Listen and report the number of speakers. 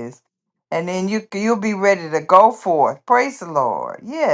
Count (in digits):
1